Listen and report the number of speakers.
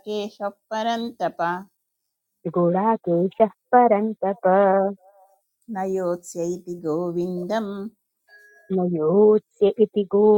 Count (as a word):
two